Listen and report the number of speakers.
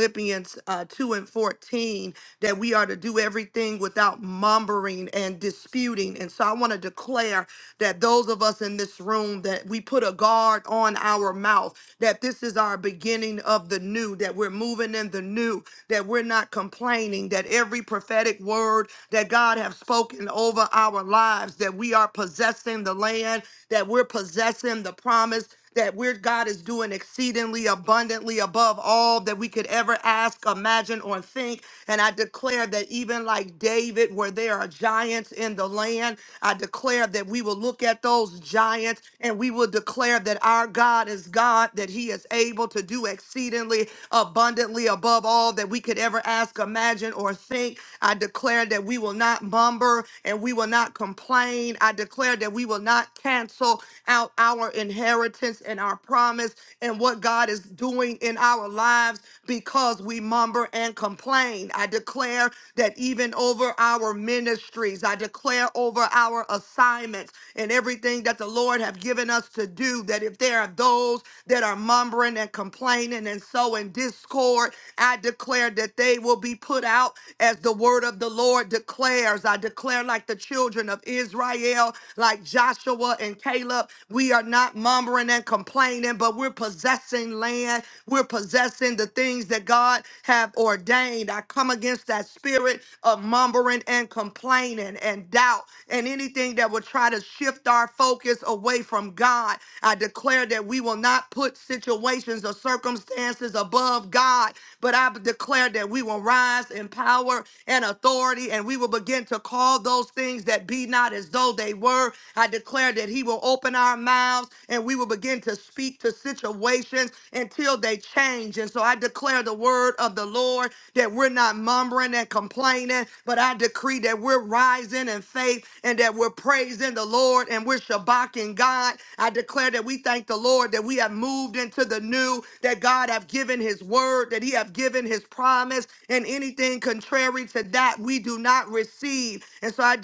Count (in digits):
1